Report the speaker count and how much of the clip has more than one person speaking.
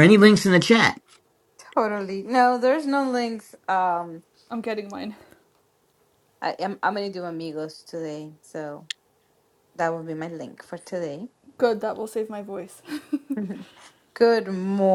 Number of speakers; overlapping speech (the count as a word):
three, no overlap